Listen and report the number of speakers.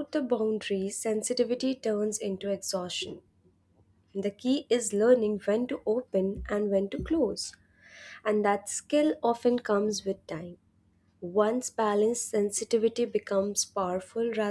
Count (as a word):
one